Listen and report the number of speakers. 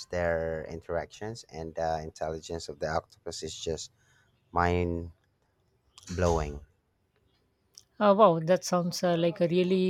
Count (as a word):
two